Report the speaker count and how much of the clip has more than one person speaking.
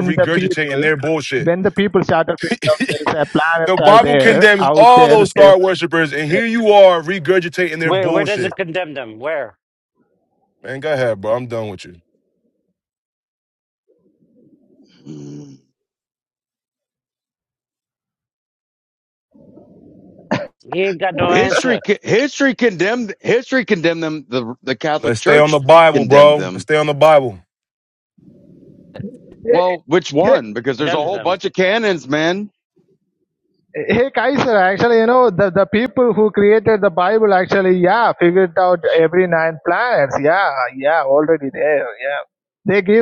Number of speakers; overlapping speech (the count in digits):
4, about 13%